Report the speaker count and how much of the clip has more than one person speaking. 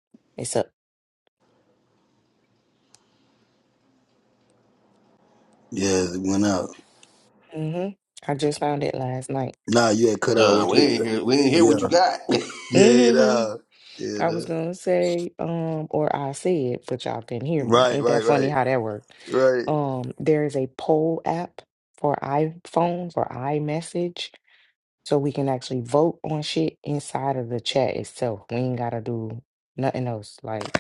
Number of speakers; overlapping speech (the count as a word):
three, about 9%